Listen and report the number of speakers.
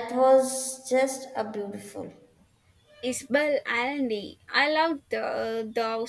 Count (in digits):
2